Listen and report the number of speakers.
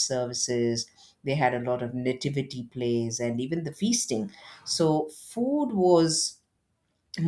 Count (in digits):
1